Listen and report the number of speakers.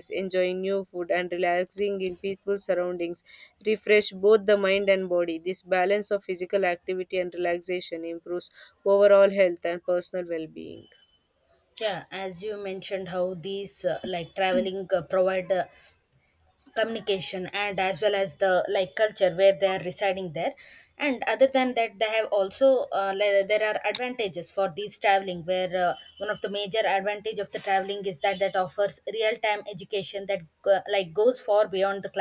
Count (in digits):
2